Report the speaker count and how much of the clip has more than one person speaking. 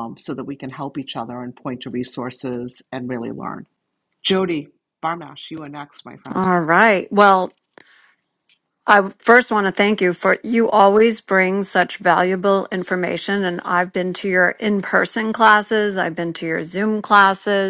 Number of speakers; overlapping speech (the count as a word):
two, about 1%